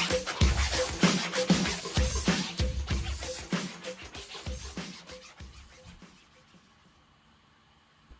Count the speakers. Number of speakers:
zero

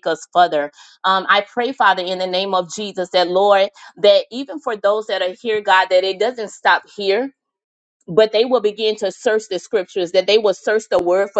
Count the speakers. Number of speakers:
one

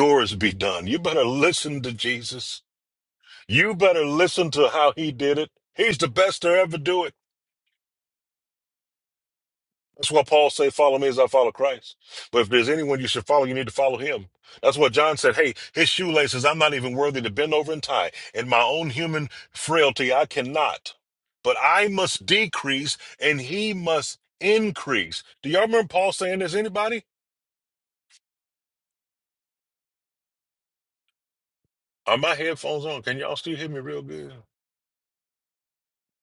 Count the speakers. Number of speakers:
one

